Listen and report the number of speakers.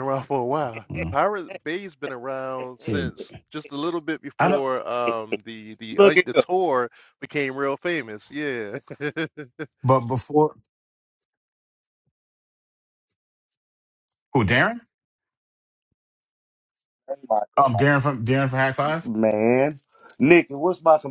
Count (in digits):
3